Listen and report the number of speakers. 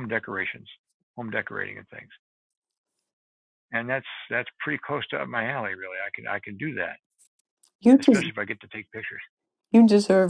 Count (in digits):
2